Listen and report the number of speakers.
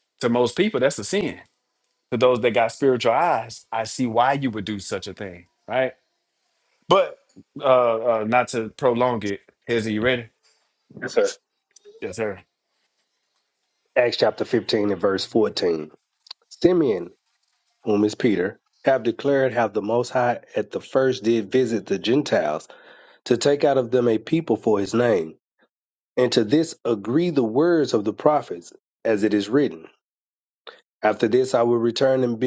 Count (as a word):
two